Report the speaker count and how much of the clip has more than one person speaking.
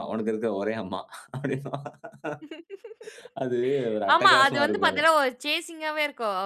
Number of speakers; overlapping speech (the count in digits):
2, about 15%